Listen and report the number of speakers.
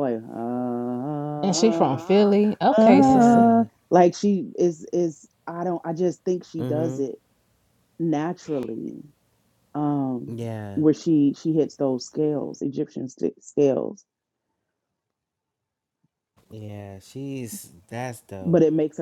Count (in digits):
3